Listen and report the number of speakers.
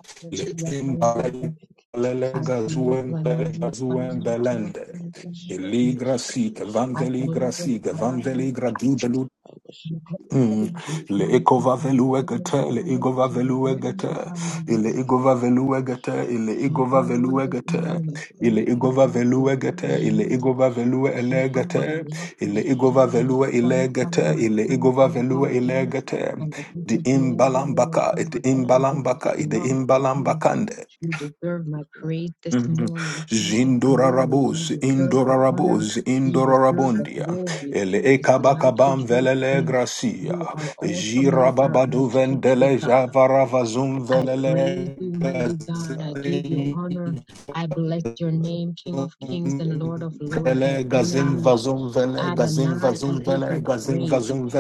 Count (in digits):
3